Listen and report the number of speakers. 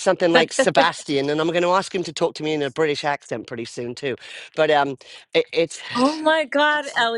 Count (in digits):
2